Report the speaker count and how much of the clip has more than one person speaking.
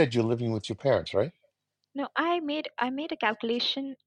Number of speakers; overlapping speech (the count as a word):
two, no overlap